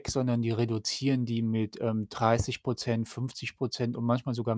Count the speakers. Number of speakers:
1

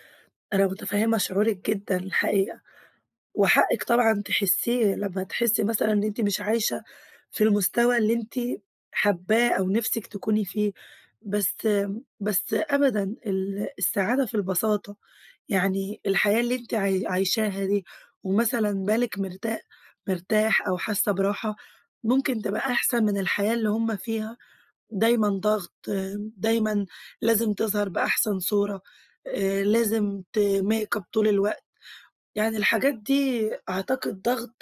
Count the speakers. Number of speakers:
1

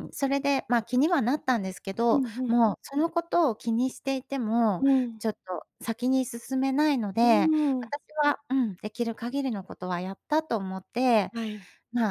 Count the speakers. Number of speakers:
2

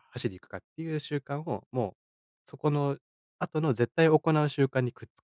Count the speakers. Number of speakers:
1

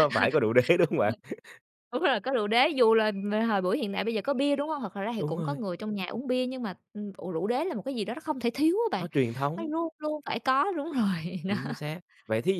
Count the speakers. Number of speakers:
2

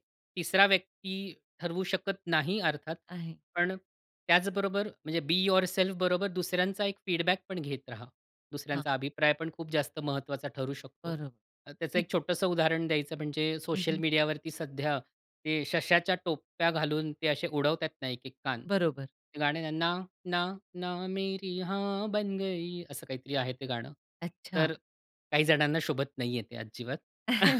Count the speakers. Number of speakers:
2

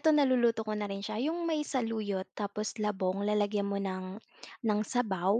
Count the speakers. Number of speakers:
1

